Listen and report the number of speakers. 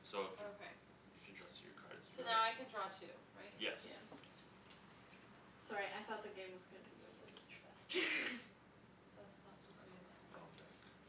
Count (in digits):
3